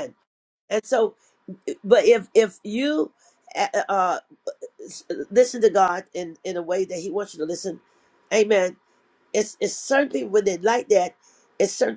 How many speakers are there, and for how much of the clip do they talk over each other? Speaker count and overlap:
one, no overlap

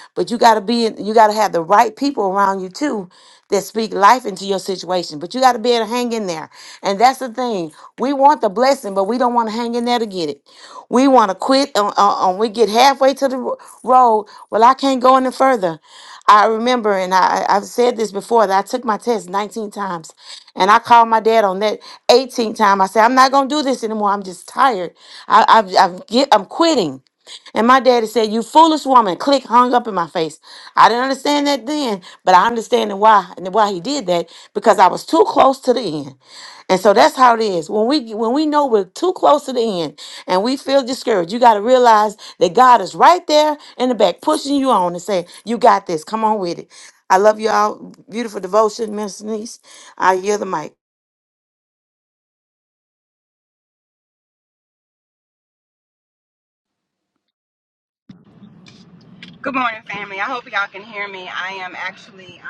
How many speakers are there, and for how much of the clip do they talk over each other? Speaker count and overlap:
two, no overlap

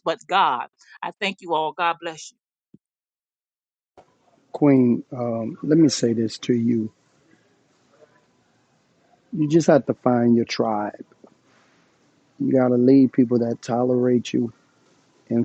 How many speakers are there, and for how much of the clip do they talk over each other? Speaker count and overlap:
two, no overlap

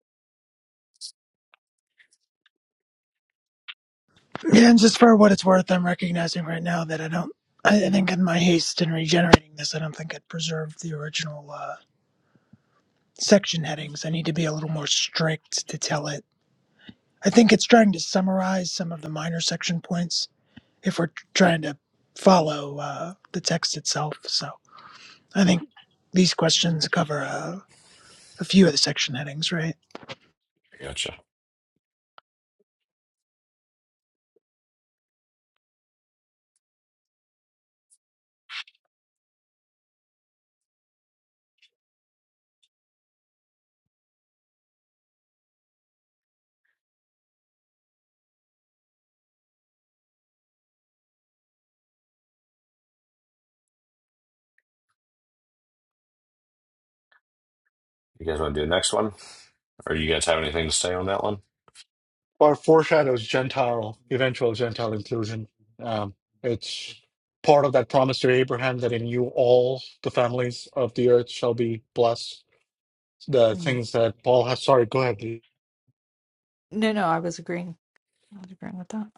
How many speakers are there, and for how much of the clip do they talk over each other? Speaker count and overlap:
four, under 1%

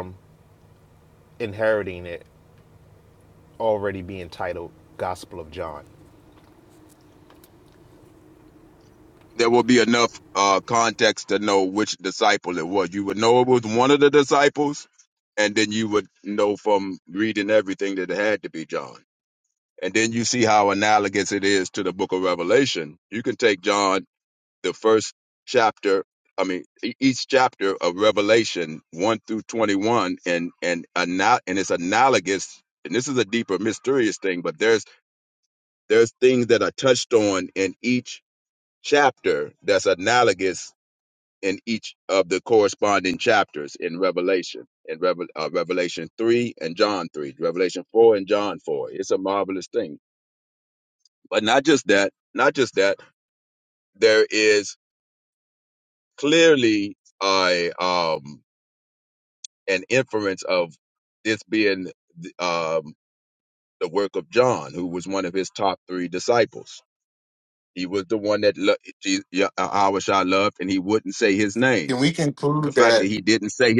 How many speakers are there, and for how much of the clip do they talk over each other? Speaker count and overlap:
three, about 1%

